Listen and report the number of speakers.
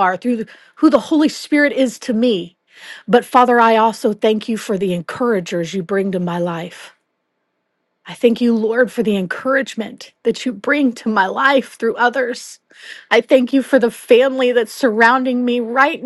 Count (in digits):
1